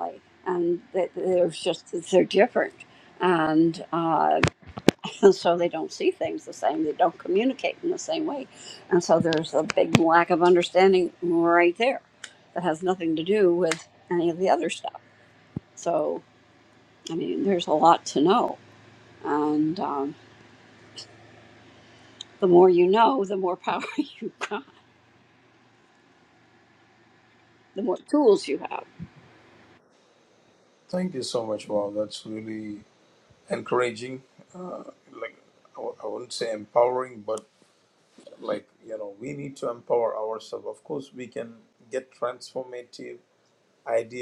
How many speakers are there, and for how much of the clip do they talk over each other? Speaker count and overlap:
two, no overlap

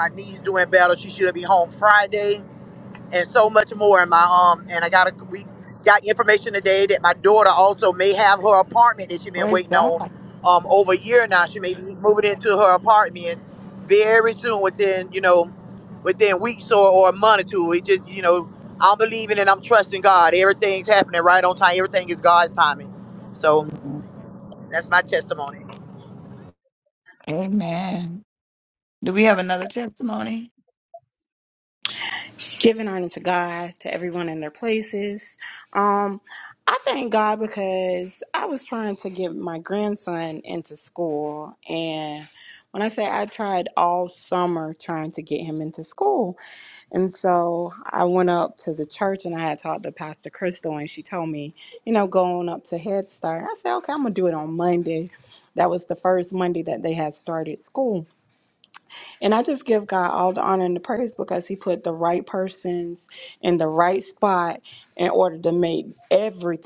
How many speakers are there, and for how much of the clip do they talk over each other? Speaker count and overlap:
three, about 1%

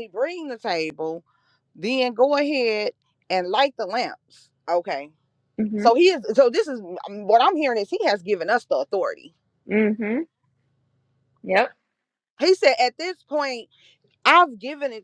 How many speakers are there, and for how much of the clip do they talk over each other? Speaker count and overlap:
two, about 1%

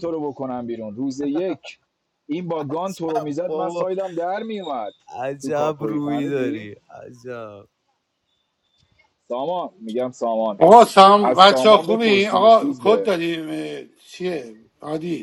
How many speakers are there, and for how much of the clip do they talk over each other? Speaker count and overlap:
three, about 28%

